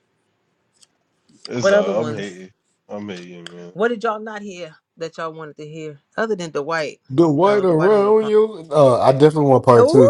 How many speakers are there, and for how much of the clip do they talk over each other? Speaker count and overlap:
3, about 18%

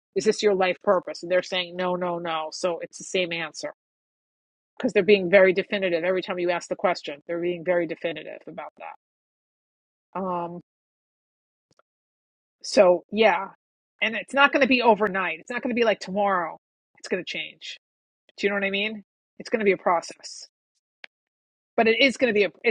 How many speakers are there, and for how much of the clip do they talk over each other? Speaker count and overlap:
1, no overlap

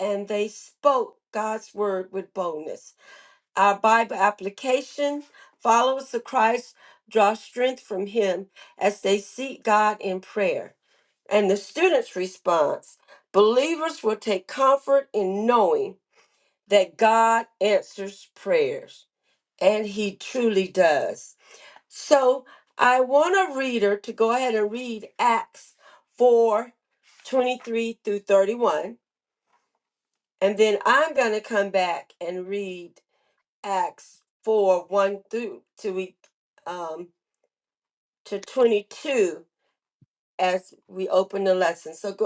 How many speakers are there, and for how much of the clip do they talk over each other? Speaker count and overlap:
1, no overlap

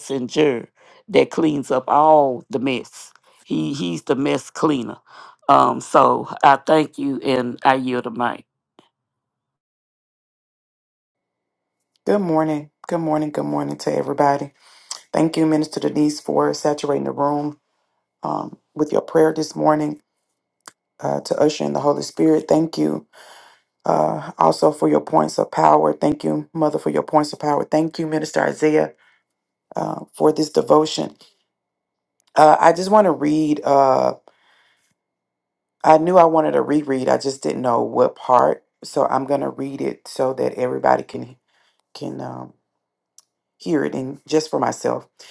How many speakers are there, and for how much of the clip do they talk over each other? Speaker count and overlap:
2, no overlap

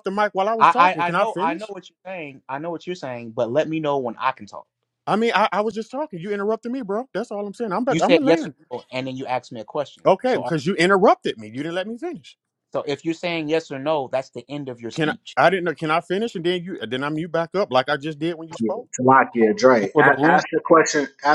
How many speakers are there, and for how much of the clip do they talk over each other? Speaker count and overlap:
3, about 14%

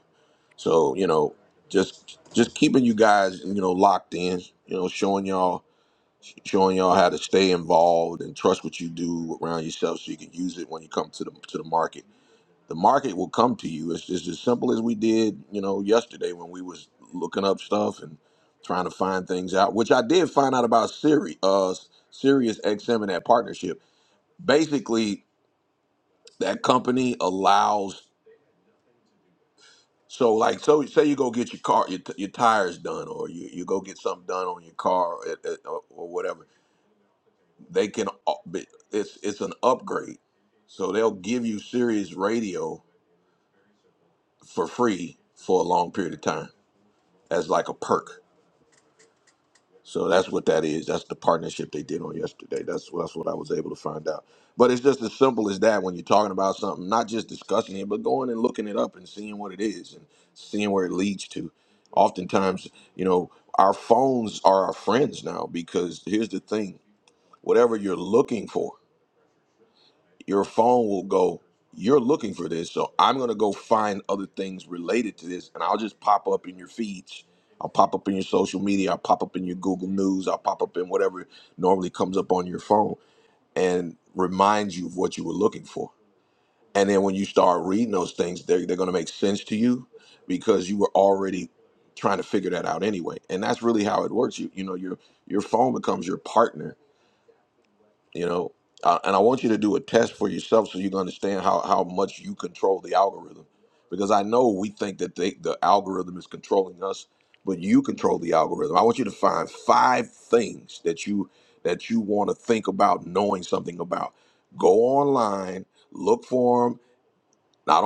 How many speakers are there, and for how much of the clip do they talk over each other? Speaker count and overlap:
1, no overlap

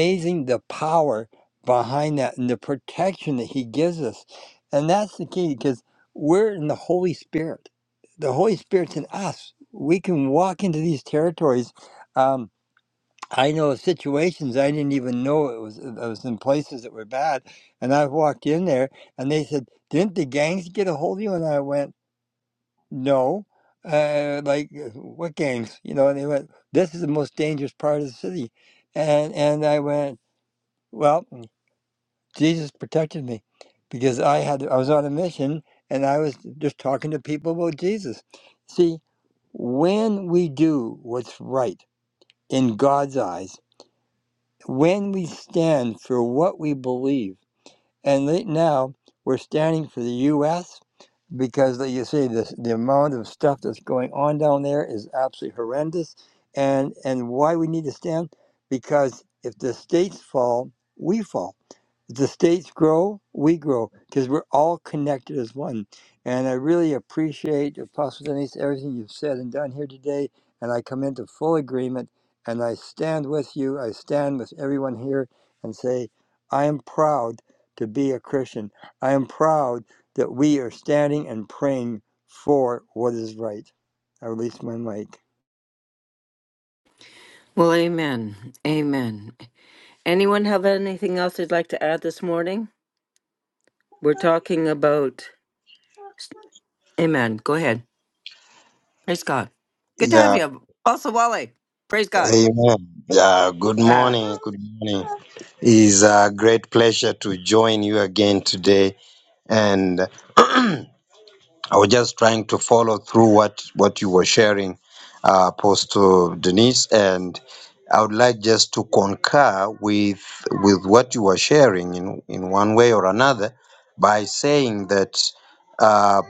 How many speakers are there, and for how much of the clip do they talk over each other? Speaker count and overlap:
3, under 1%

